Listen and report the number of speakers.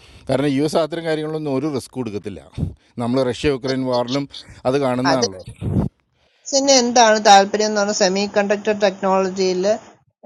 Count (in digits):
2